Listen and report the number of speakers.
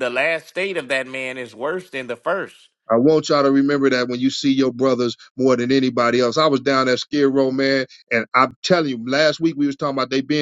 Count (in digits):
2